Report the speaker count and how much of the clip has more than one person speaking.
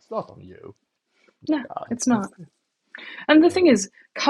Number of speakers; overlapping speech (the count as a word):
two, about 13%